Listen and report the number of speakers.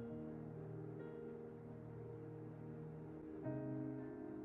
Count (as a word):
zero